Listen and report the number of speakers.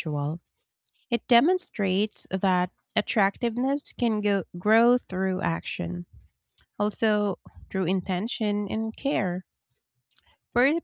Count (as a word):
one